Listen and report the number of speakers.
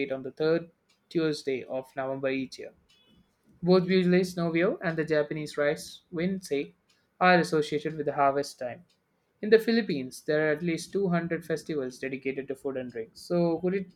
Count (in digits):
1